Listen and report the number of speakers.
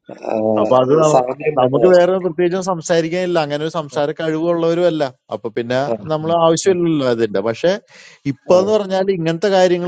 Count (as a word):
two